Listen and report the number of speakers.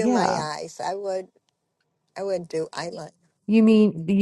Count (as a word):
two